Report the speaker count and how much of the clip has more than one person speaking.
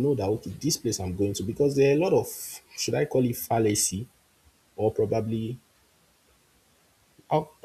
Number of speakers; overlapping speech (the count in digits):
1, no overlap